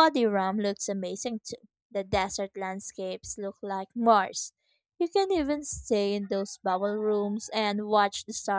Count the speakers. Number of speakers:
1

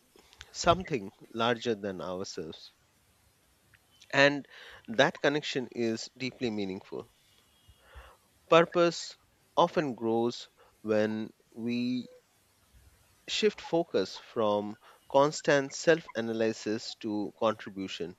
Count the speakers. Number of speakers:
1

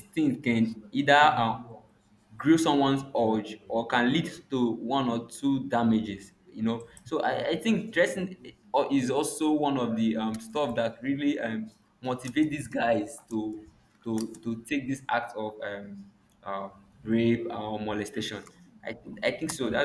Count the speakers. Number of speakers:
1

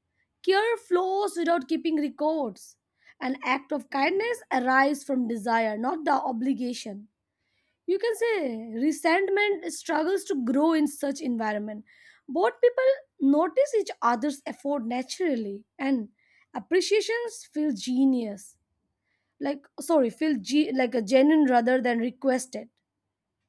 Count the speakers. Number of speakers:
1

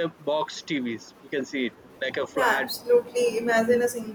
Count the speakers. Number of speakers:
2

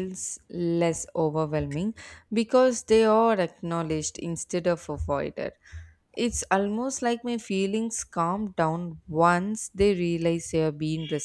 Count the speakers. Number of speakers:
1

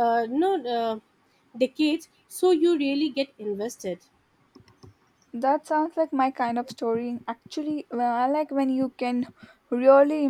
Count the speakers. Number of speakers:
2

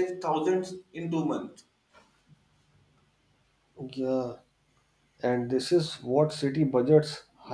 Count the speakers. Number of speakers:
2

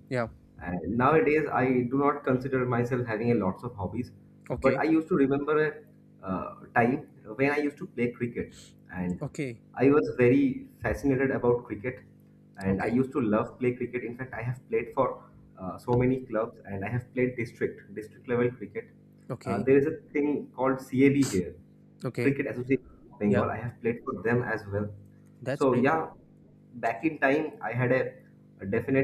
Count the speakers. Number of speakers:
2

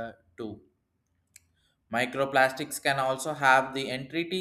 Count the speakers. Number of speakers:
1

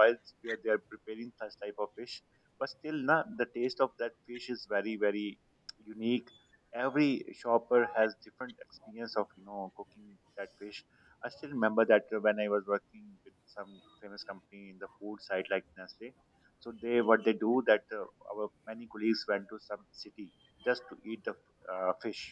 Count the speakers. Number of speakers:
1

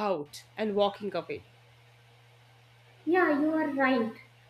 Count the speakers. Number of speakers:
2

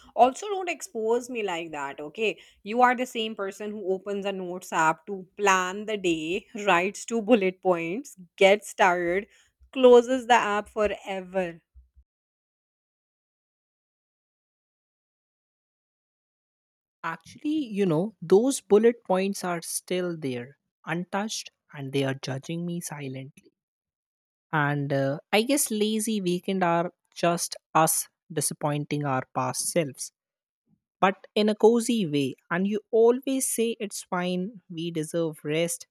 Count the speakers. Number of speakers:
2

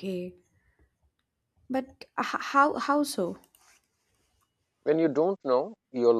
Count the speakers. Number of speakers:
2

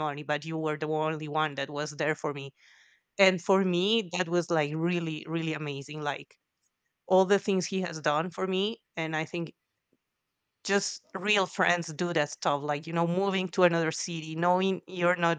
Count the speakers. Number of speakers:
1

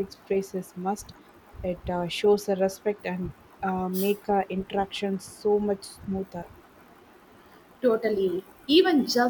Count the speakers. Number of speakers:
2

